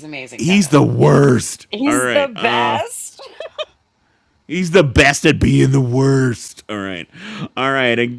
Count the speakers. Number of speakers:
two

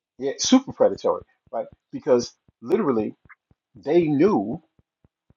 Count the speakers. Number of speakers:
one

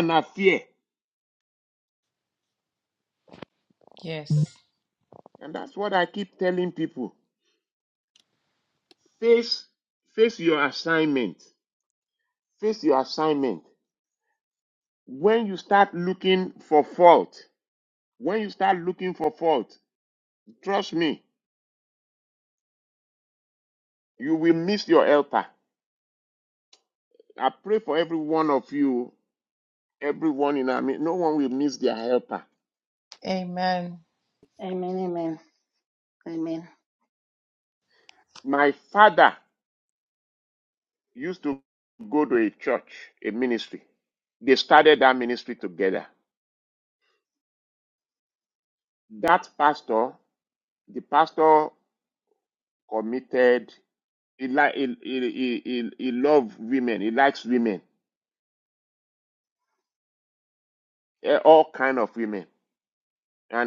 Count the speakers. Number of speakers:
three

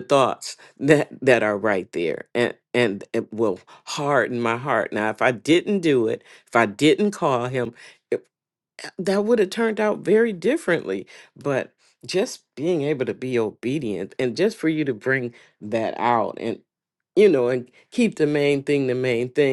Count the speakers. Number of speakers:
one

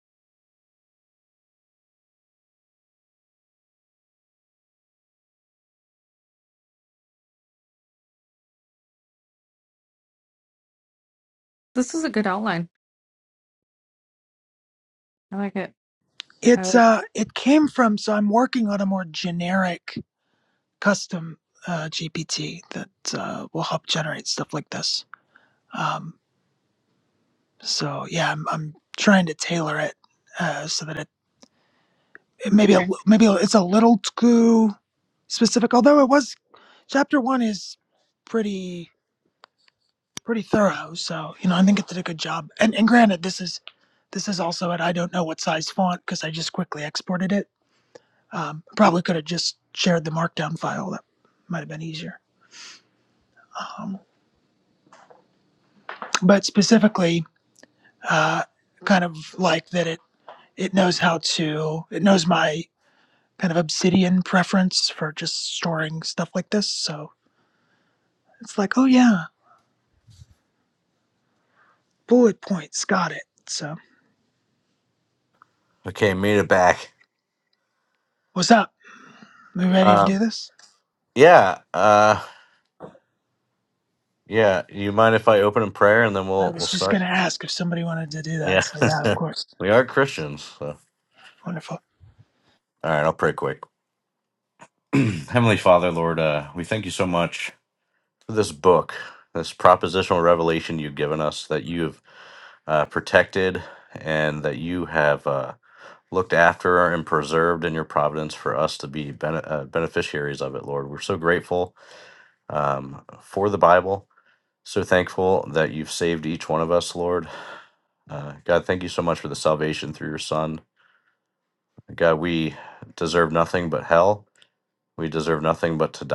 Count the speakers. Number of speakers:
three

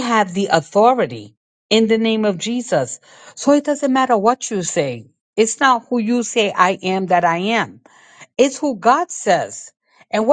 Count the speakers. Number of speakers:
one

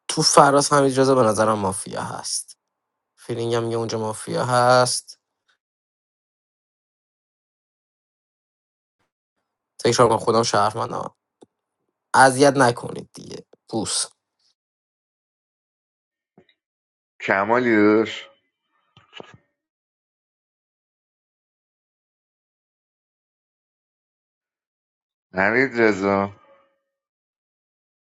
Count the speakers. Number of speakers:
two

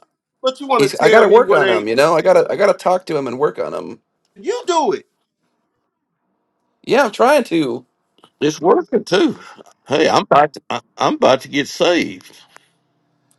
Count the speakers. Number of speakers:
three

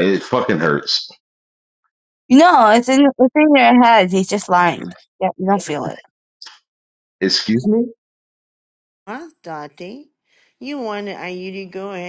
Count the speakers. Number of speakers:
three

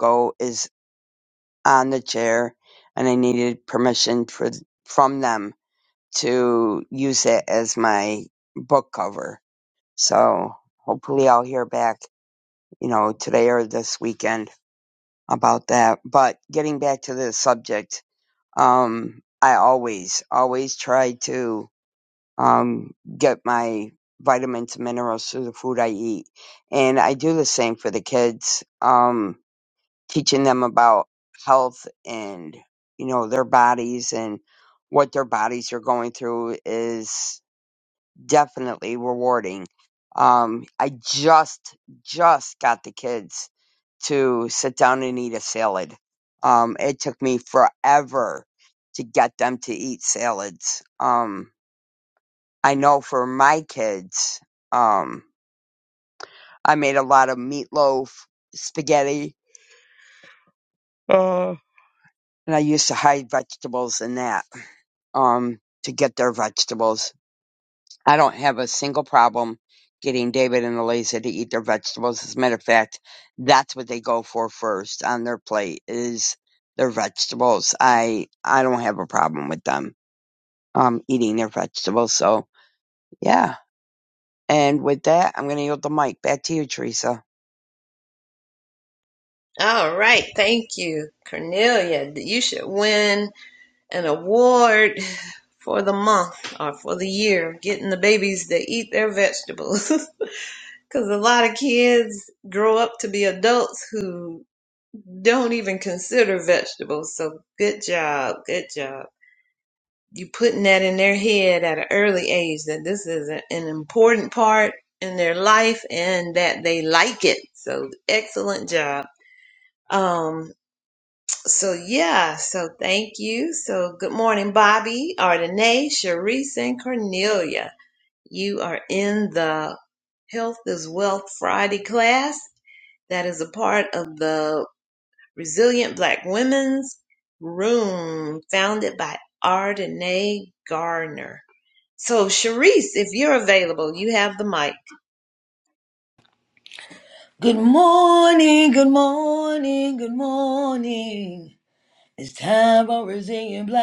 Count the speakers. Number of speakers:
three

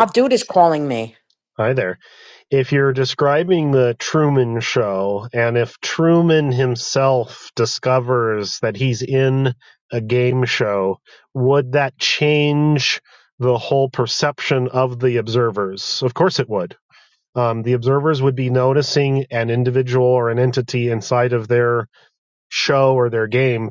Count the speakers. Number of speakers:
two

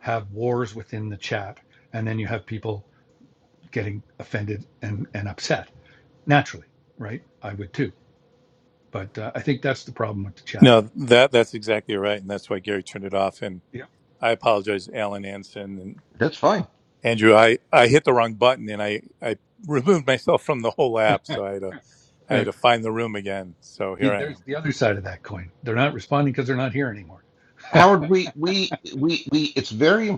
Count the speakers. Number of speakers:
three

